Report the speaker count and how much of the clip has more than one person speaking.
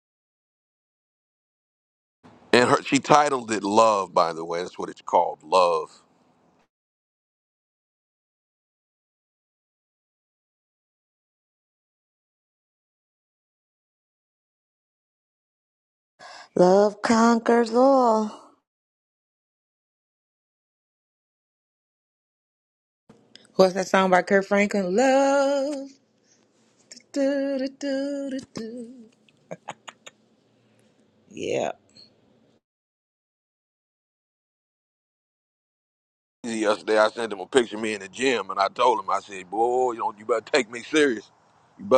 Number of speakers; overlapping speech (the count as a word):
three, no overlap